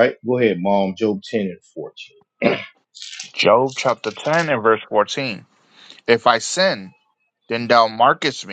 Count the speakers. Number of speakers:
2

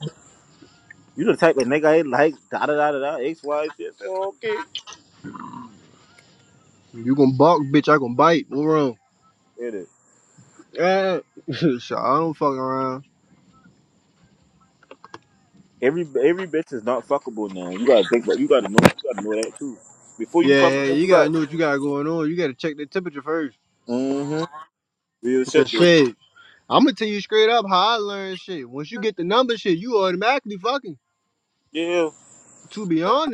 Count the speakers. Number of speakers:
2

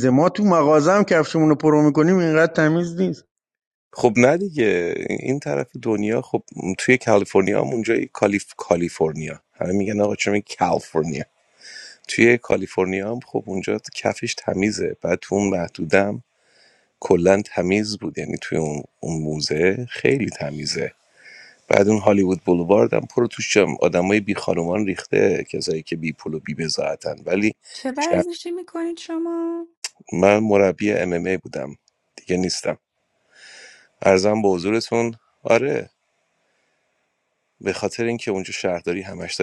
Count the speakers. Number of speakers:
3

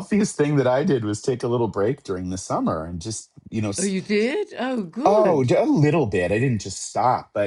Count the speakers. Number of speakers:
2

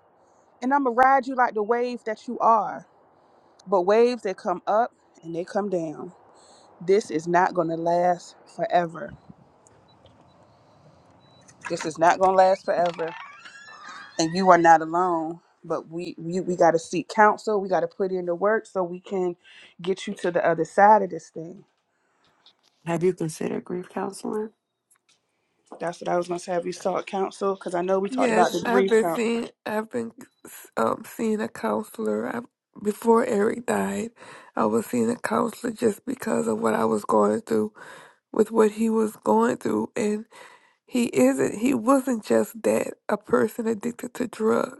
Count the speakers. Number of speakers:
3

